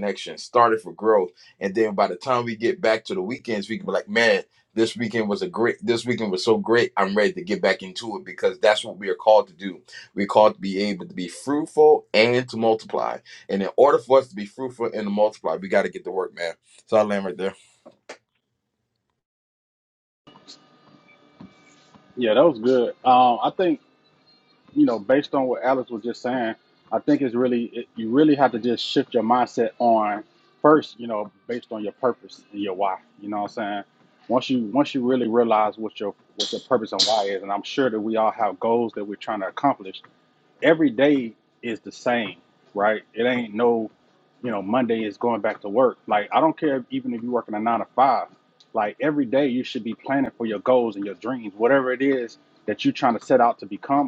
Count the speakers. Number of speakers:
2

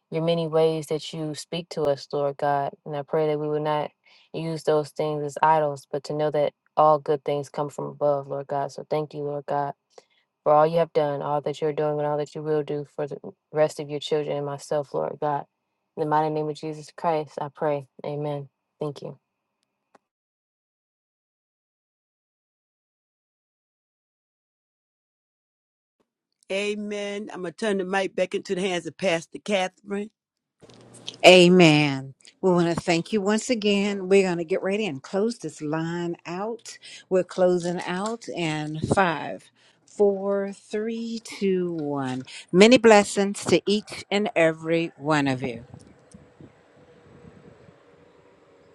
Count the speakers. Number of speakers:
3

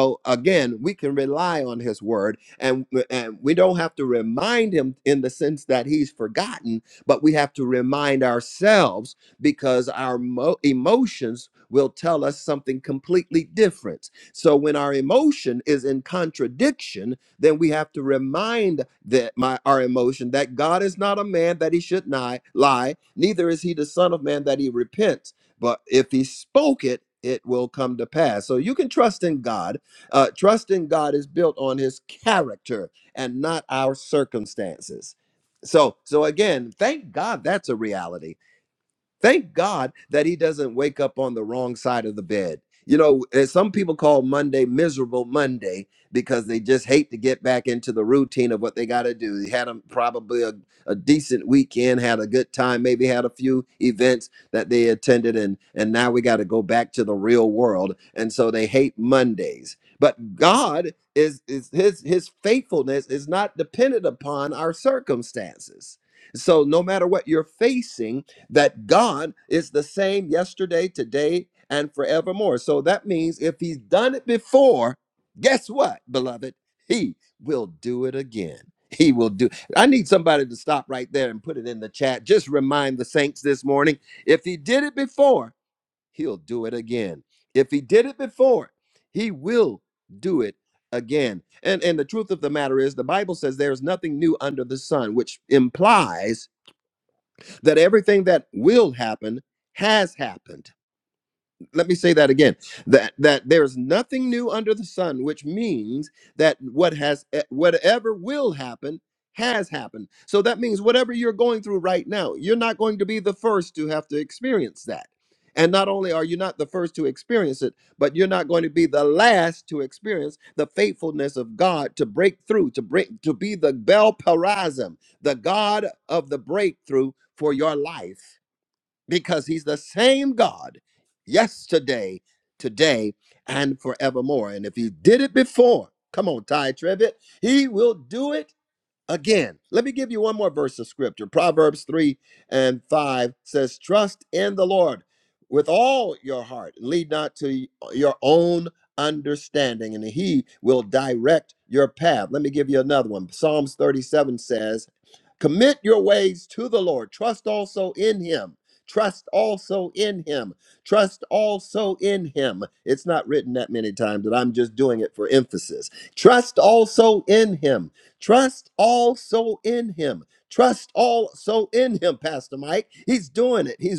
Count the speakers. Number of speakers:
1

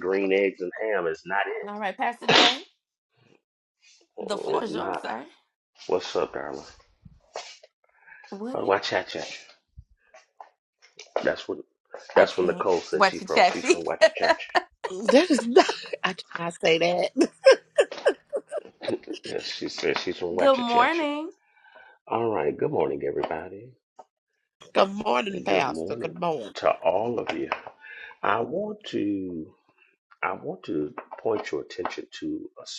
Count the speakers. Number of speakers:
3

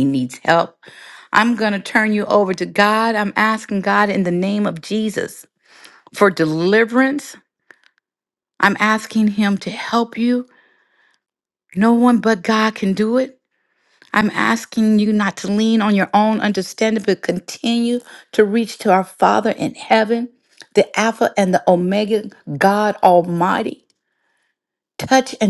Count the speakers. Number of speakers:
1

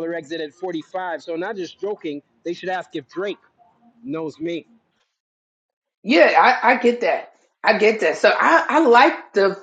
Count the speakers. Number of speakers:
2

